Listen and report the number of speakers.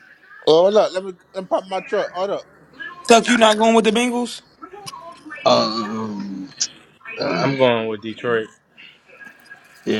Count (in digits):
4